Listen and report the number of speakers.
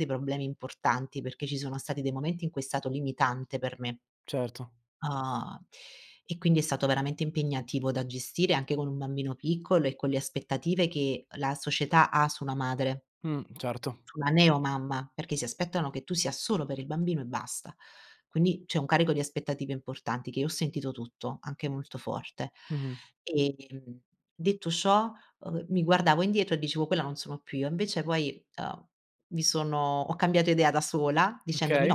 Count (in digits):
2